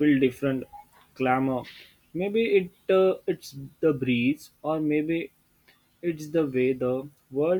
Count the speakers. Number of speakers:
1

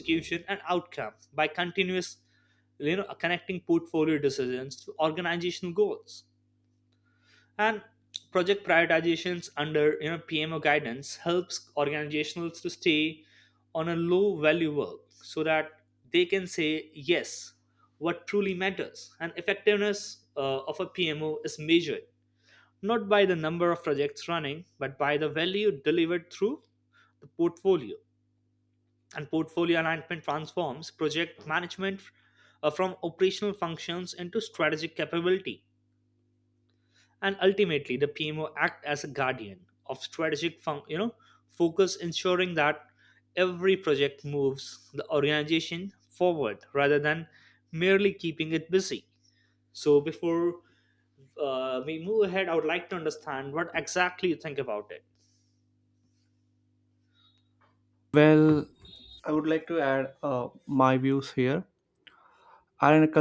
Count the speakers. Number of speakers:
2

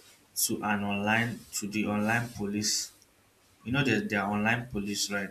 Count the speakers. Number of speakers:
1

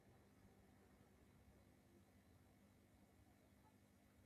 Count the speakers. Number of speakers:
0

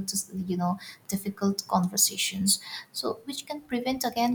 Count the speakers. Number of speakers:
1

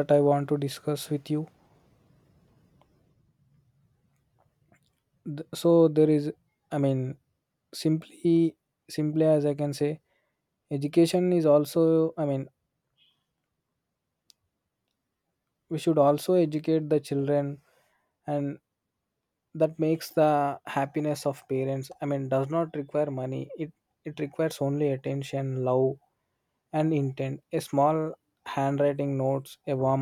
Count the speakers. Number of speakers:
1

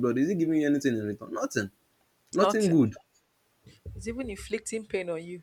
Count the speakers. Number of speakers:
2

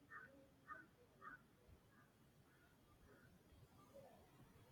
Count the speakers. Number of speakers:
0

